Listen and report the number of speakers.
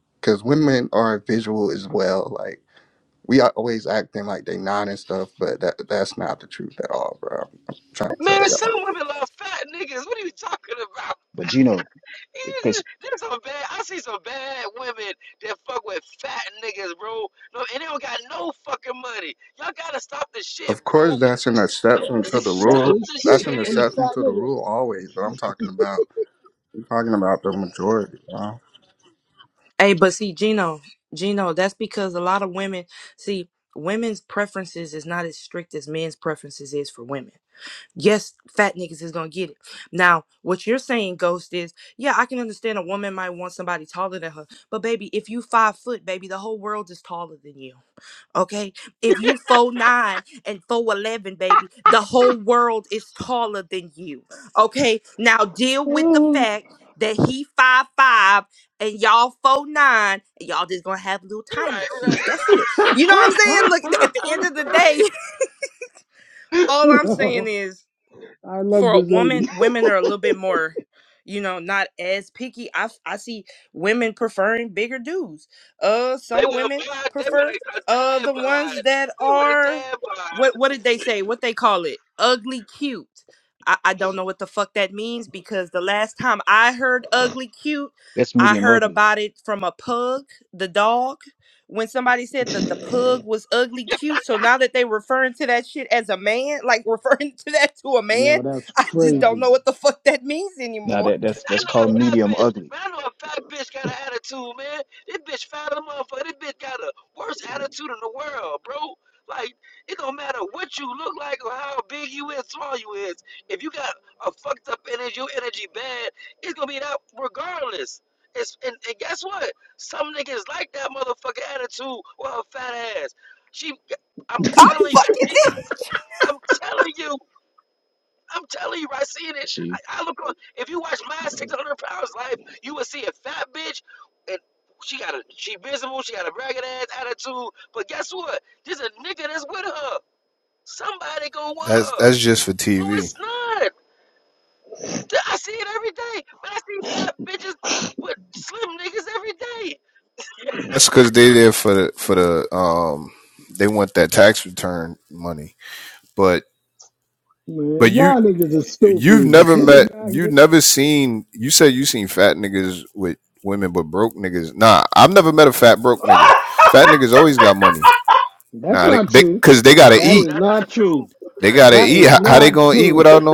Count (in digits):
6